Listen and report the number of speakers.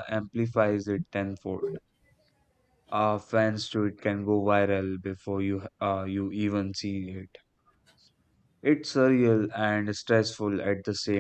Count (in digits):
1